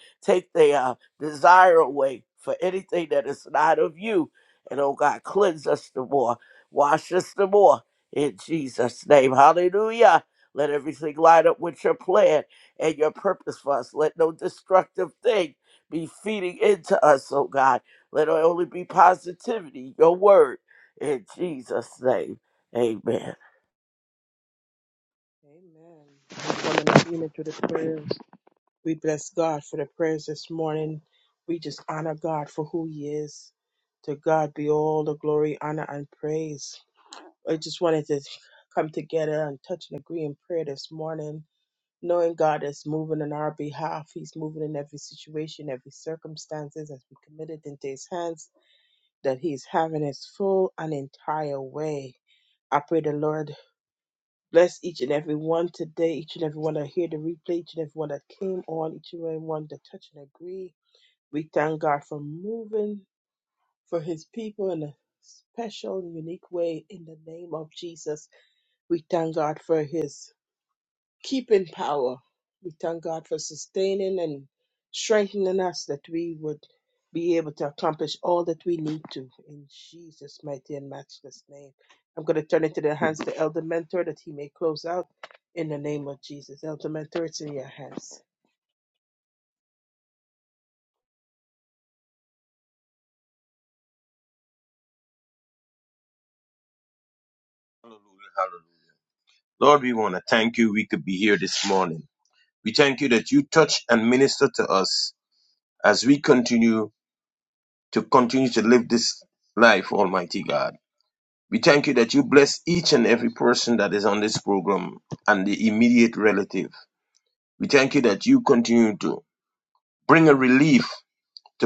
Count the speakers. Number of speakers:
3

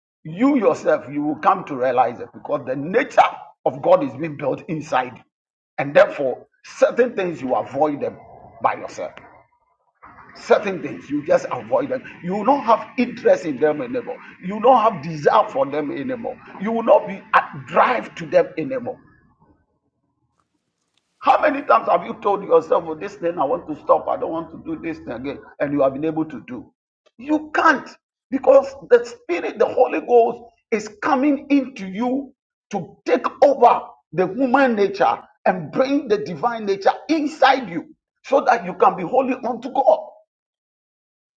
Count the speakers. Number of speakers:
1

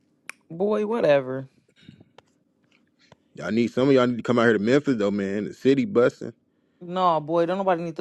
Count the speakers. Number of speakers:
2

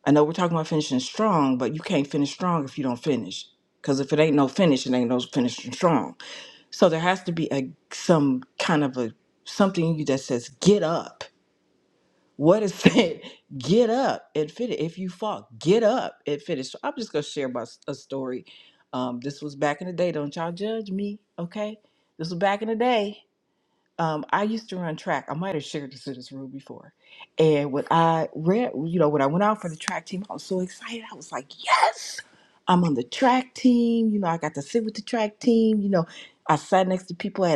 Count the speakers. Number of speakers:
1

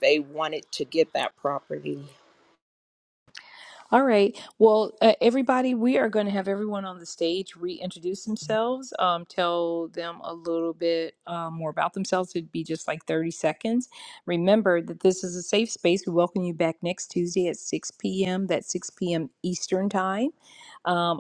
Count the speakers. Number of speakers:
2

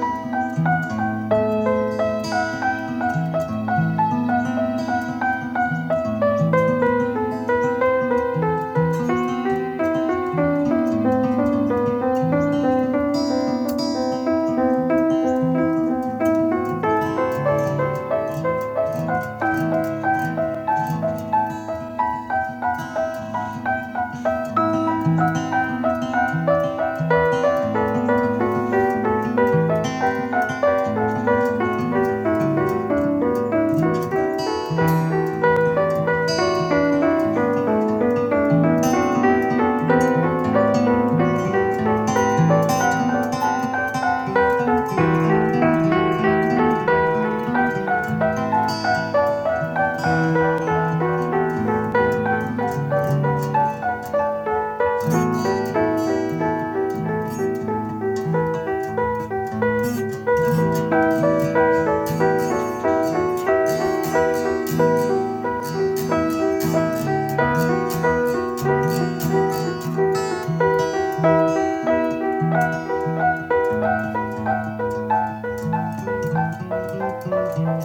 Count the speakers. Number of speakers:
0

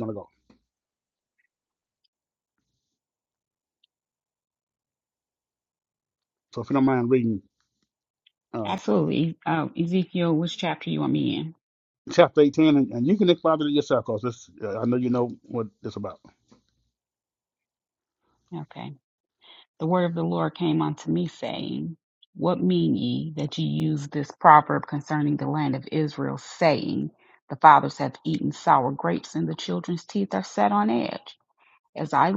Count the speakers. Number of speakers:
2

